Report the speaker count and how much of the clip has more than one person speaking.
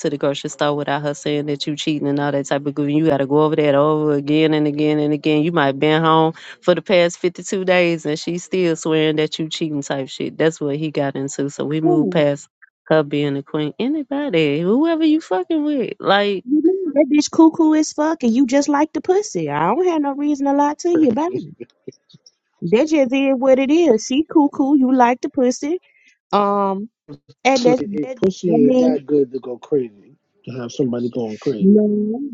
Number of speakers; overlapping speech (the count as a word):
three, about 6%